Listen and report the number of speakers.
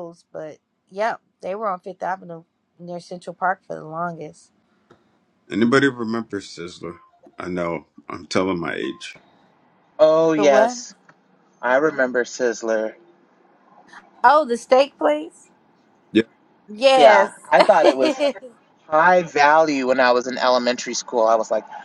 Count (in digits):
3